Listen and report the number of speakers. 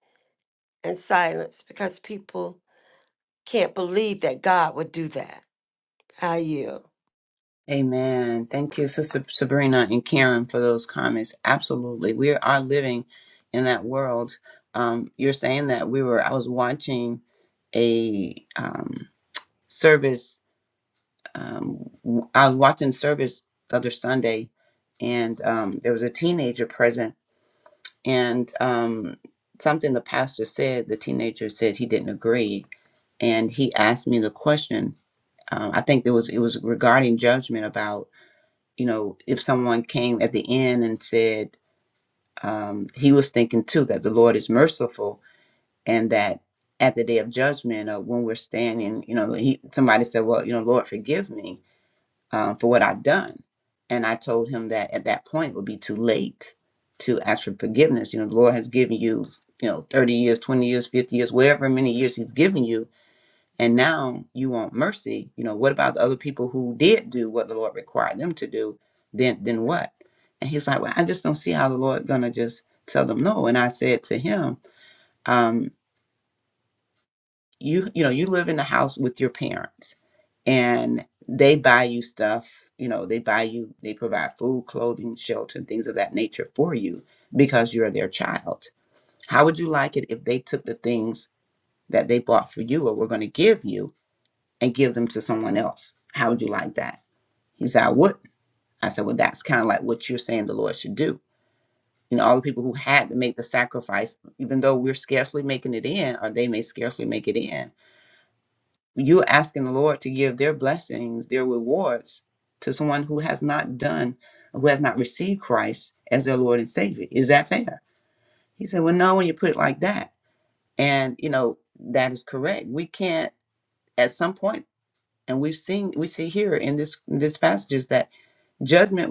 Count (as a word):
two